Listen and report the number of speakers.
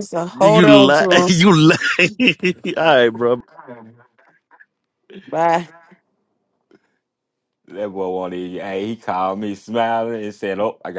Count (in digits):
3